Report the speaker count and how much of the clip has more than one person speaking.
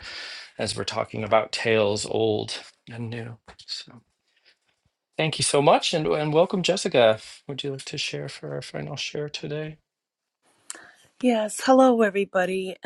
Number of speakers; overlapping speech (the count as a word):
two, no overlap